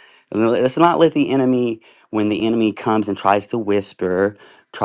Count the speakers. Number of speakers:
1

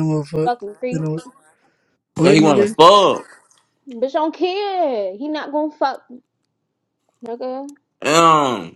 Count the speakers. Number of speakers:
3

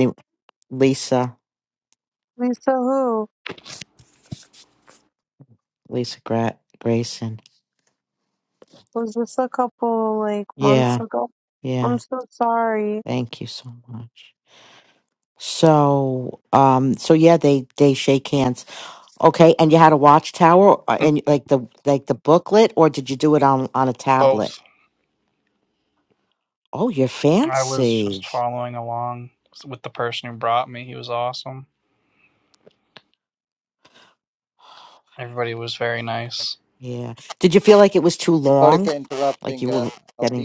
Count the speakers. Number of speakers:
4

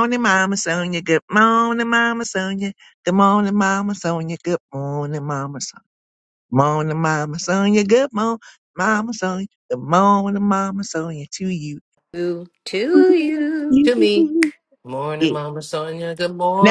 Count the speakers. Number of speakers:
3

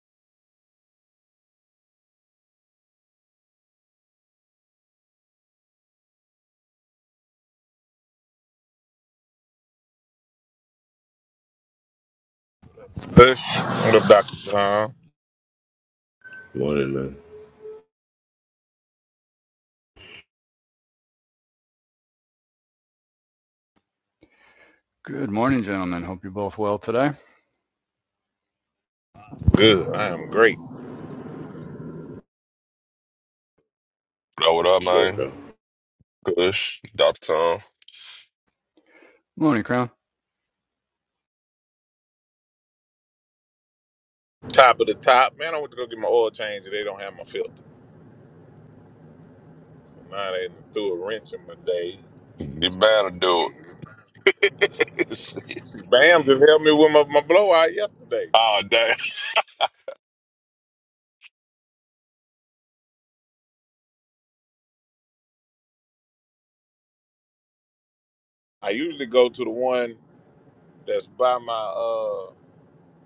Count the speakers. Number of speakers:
4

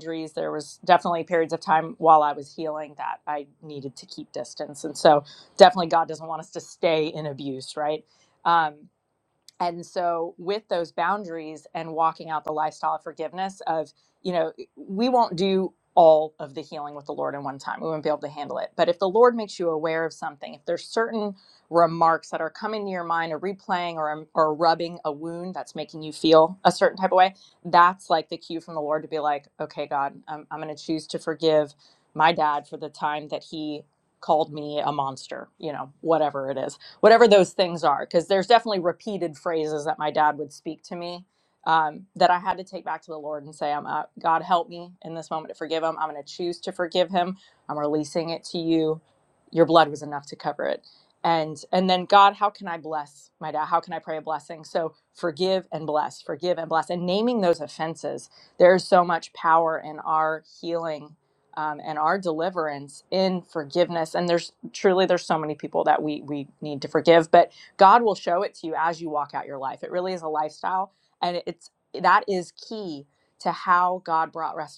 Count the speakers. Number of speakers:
1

